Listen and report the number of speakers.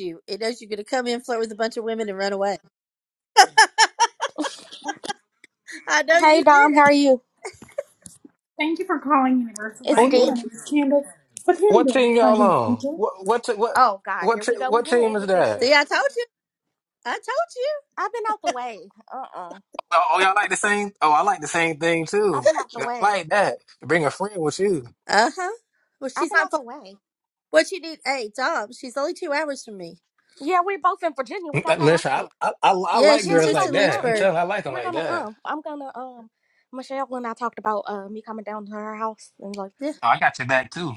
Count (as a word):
four